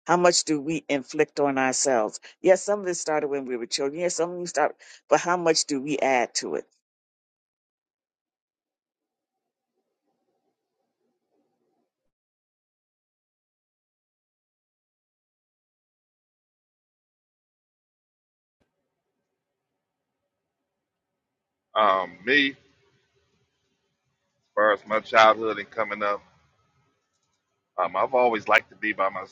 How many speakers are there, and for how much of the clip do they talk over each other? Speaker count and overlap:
2, no overlap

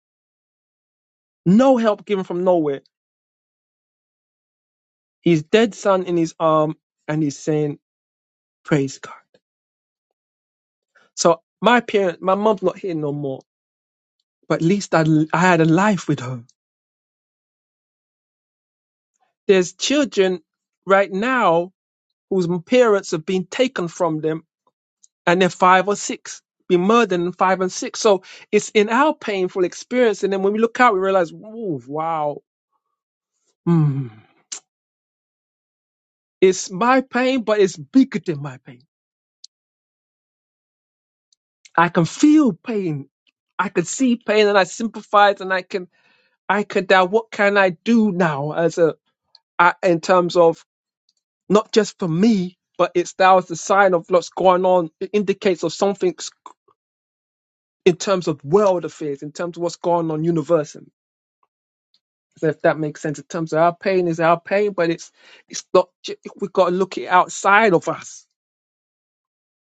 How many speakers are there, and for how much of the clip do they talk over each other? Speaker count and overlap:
1, no overlap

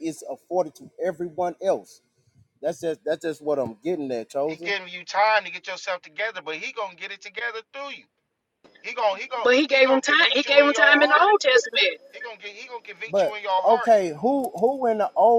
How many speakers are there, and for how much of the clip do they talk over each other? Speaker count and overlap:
3, about 18%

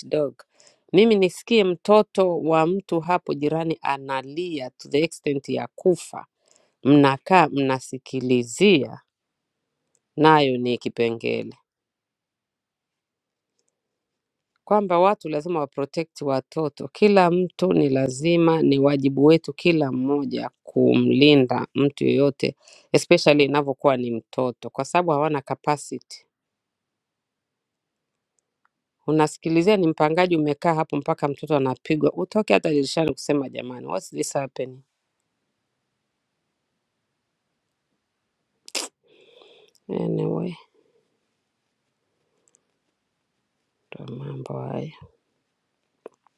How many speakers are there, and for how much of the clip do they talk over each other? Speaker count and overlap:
1, no overlap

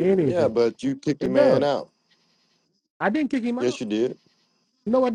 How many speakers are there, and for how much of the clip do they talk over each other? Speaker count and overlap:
2, about 18%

